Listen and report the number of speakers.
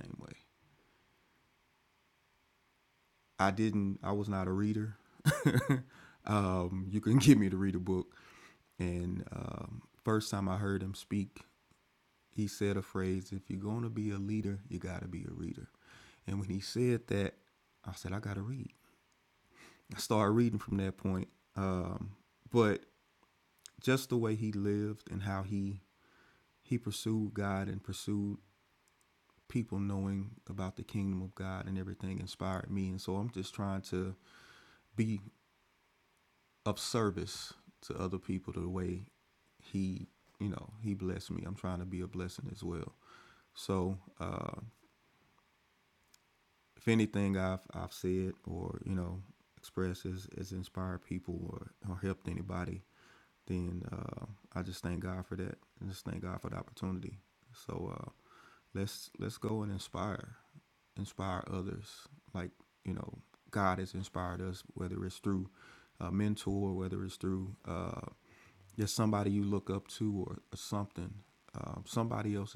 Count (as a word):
one